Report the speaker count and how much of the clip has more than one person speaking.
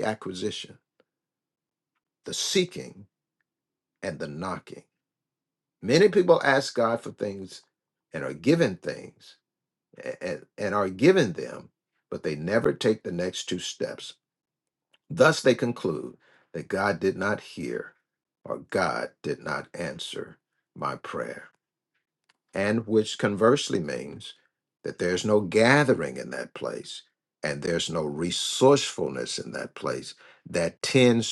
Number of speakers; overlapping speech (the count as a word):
one, no overlap